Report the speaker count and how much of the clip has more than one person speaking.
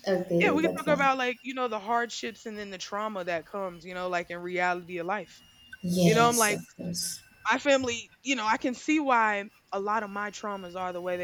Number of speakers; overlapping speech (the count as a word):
two, about 11%